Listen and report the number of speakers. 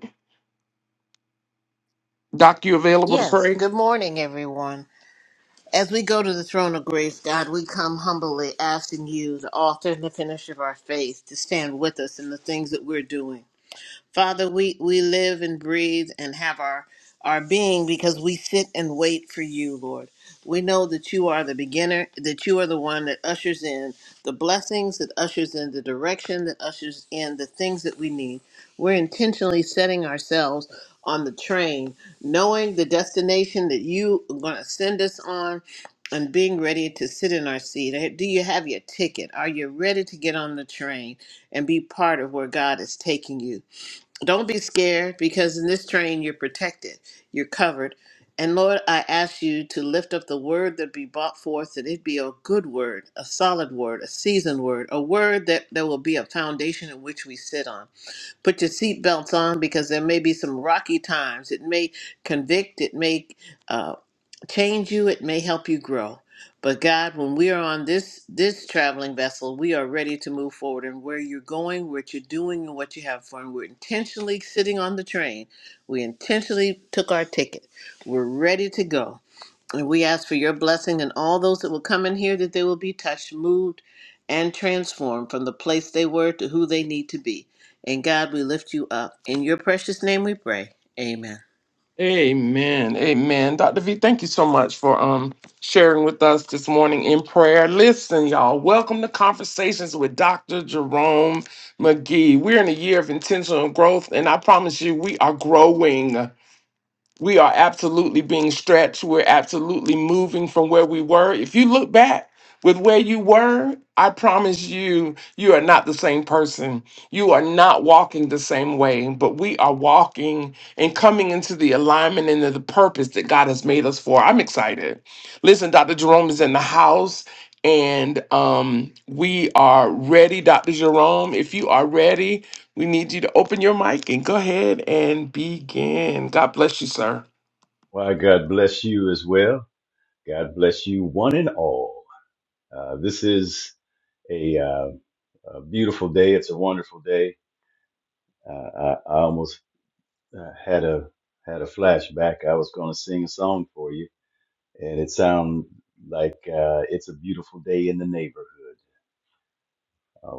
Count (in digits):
3